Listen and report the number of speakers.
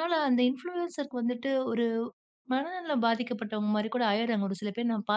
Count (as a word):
one